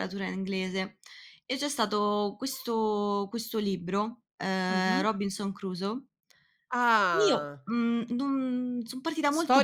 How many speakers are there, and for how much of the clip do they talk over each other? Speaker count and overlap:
two, about 10%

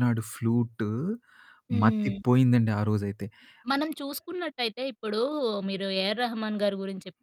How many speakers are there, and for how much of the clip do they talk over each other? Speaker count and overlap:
two, about 6%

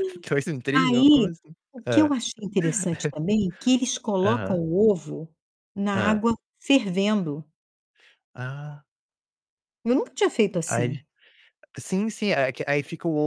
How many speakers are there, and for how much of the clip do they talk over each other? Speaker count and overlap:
two, about 13%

